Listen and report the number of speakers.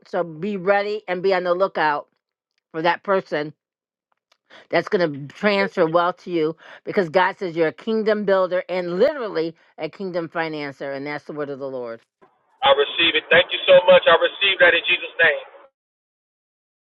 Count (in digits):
2